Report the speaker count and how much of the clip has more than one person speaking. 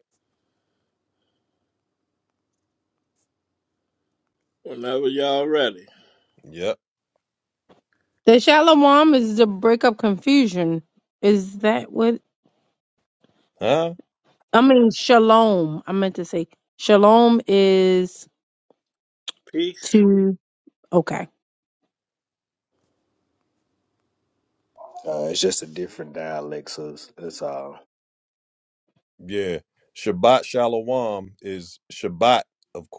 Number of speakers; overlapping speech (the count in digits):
4, under 1%